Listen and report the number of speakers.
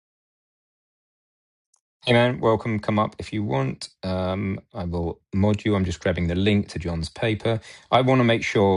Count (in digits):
1